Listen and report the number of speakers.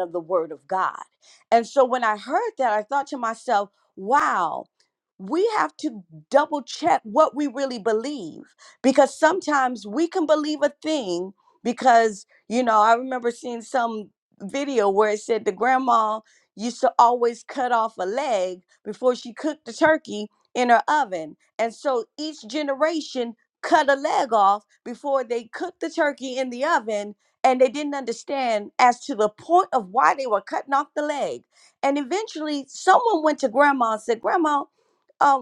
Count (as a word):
one